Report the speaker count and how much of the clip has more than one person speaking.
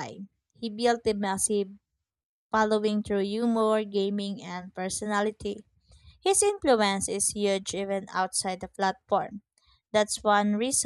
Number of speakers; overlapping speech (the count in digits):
1, no overlap